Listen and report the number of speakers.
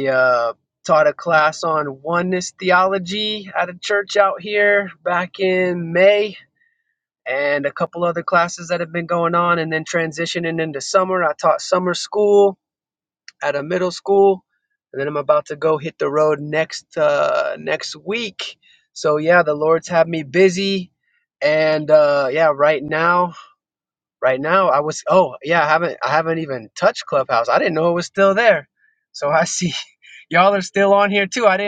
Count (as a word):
one